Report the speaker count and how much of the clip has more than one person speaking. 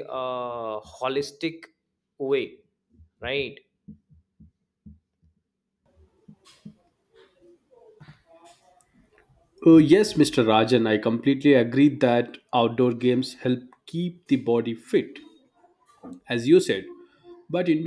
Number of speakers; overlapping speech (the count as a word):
two, no overlap